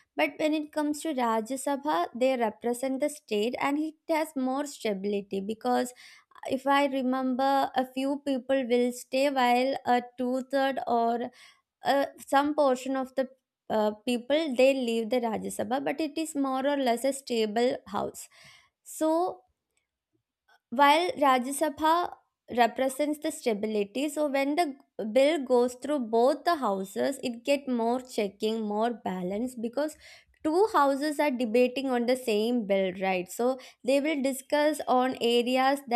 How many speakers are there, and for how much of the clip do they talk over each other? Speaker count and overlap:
1, no overlap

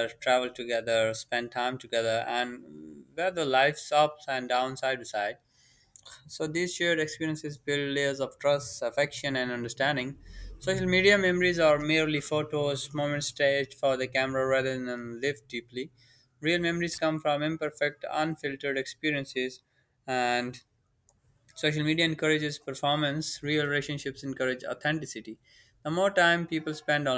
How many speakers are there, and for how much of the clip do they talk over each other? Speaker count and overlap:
1, no overlap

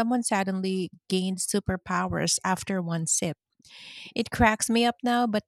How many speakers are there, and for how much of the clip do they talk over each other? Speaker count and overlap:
1, no overlap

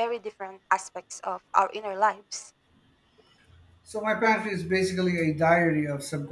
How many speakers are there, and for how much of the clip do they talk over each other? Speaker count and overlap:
2, no overlap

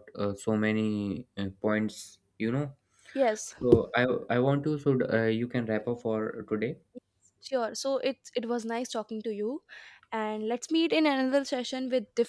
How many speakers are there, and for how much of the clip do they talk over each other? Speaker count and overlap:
2, no overlap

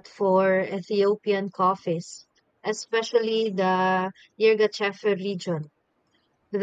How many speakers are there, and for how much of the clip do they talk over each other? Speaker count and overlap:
1, no overlap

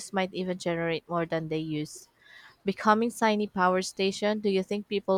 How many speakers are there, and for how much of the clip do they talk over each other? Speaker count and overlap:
1, no overlap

